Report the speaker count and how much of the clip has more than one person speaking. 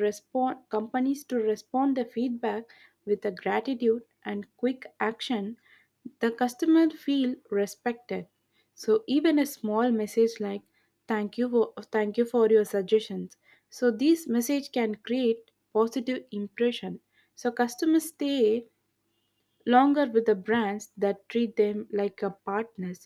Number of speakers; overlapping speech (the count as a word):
one, no overlap